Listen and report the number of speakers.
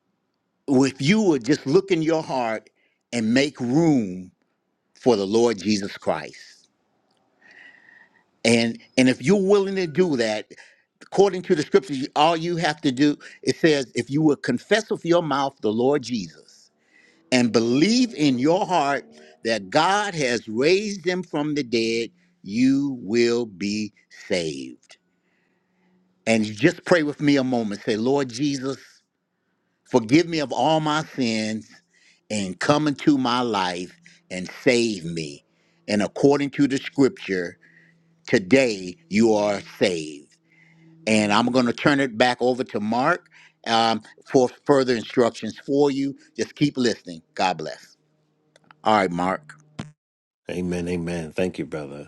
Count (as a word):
two